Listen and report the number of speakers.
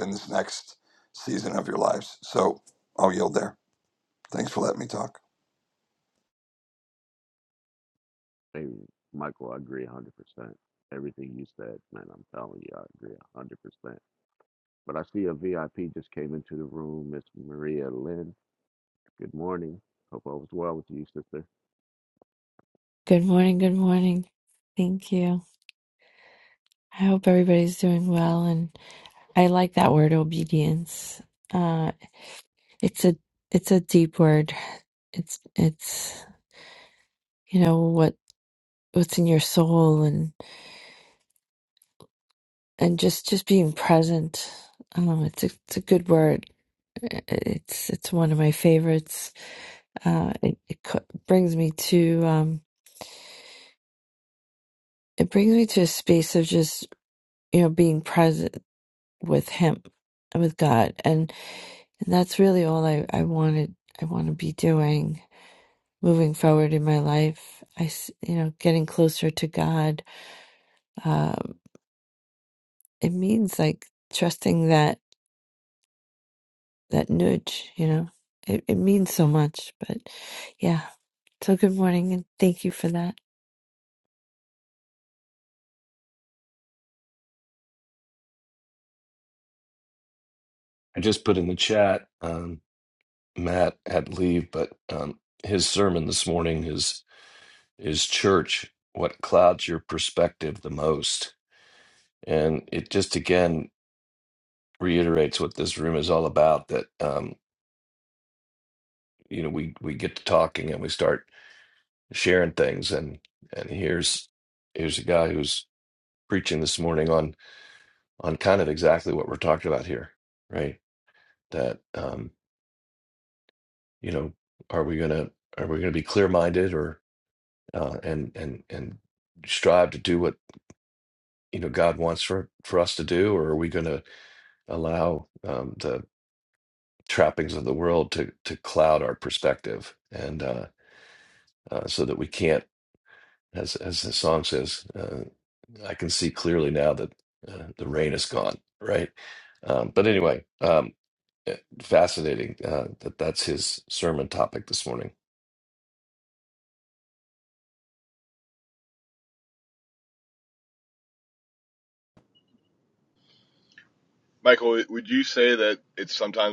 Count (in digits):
5